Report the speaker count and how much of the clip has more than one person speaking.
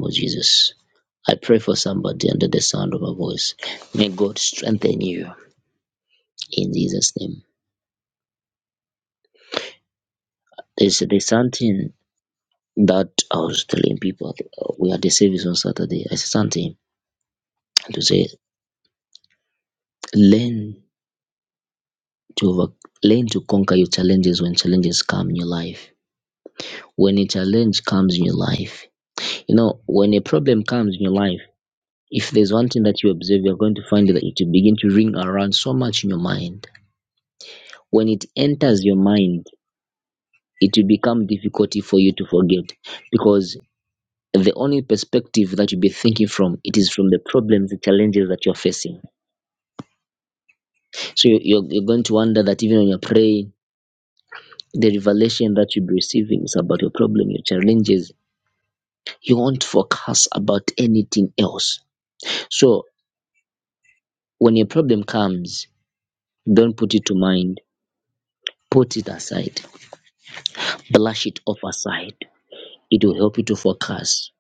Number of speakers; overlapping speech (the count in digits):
1, no overlap